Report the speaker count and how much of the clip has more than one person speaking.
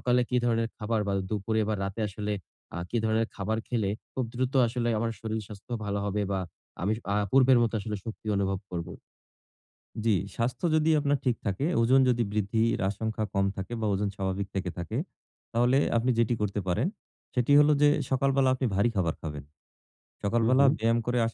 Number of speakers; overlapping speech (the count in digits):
2, about 2%